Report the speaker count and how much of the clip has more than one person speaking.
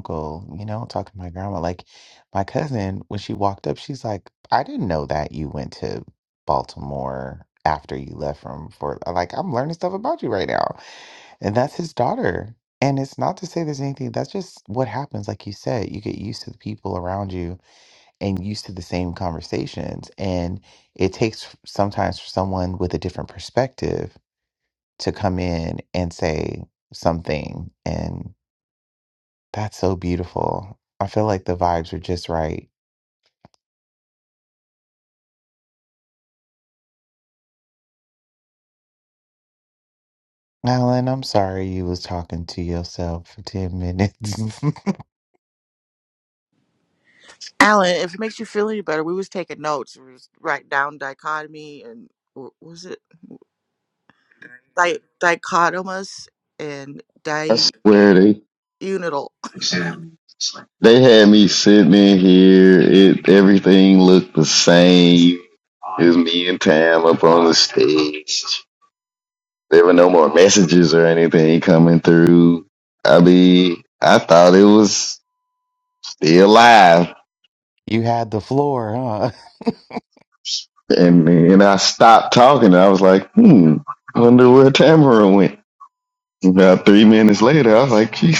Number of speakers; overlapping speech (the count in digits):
3, no overlap